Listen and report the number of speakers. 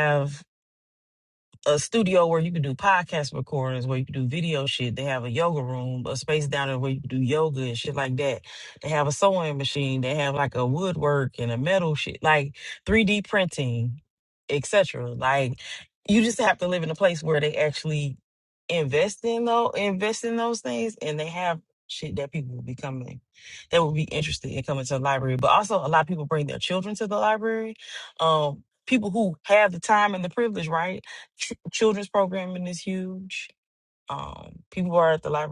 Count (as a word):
one